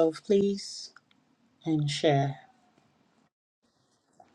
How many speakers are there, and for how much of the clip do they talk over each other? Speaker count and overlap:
1, no overlap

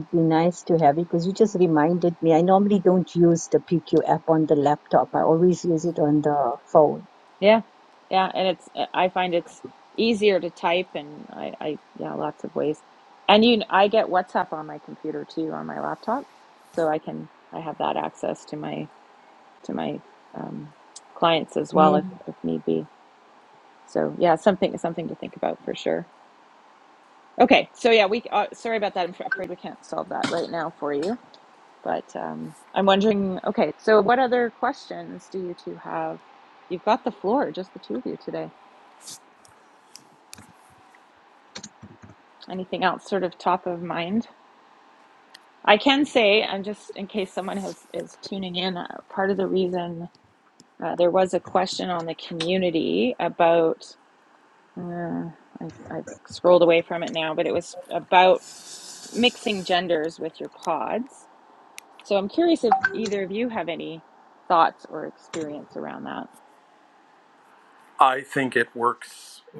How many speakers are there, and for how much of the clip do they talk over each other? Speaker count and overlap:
3, under 1%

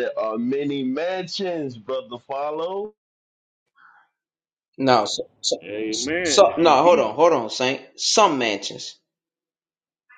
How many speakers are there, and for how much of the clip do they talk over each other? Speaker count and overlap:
3, about 8%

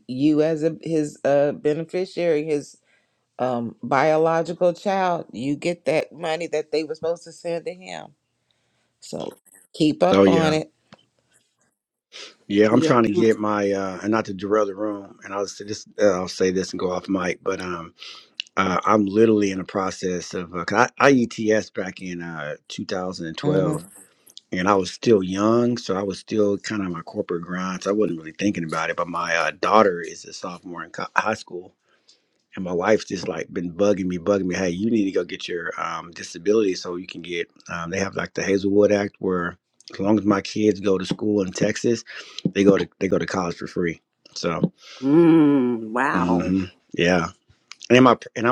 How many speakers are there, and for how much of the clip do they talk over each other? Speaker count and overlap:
3, about 3%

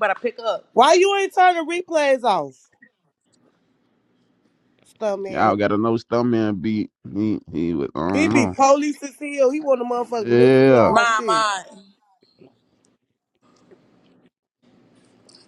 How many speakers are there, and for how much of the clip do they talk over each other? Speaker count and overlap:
3, about 12%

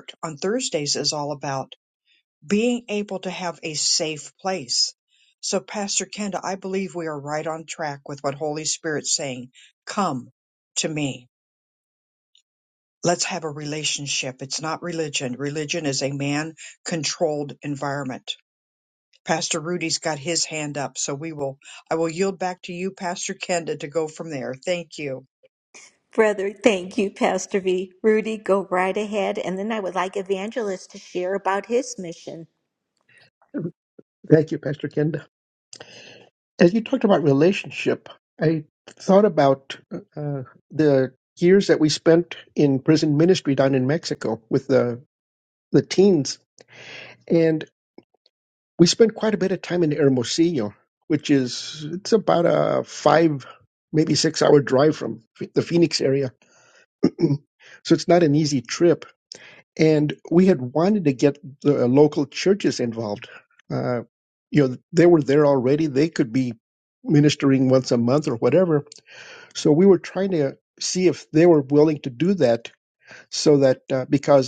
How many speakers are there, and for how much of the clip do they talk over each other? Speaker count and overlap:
3, no overlap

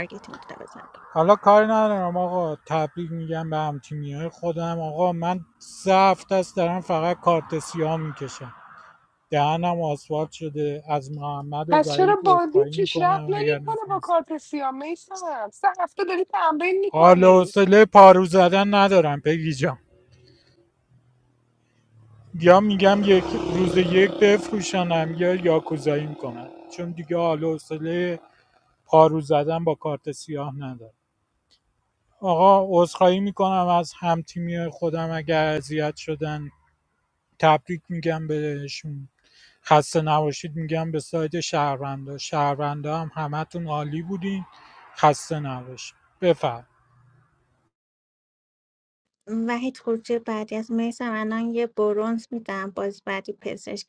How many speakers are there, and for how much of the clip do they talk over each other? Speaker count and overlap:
3, about 5%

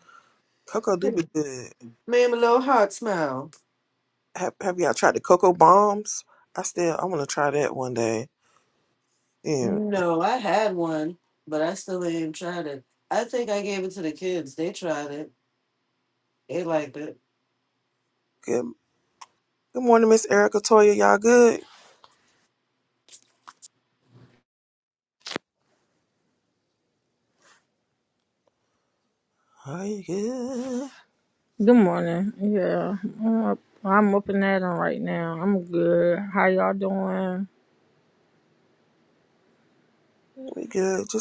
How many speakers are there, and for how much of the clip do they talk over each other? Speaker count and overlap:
3, under 1%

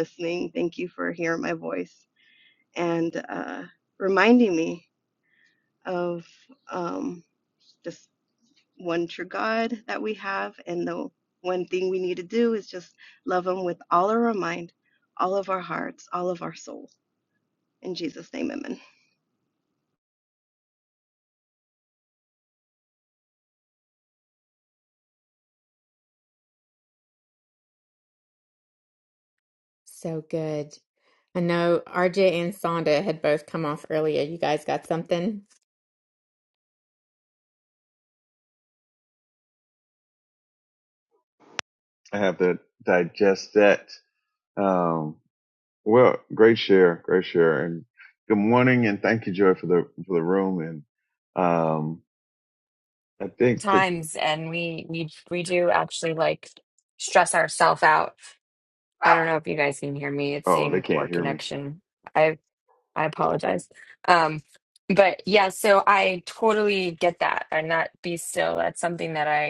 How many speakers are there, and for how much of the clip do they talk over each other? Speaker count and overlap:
4, about 2%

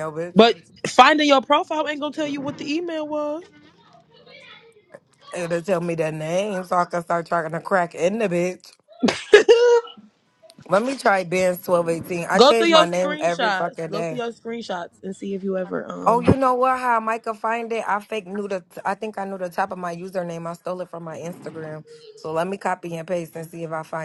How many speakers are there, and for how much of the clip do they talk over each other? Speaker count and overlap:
2, about 9%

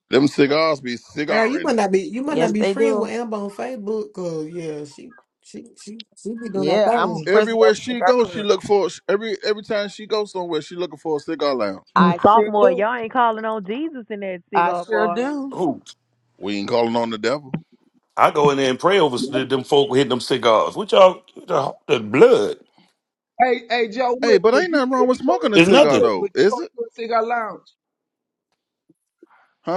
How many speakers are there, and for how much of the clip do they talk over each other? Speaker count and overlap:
6, about 23%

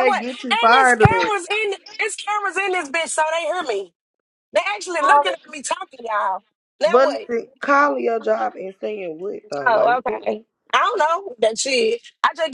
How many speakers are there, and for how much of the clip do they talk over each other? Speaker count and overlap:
2, about 15%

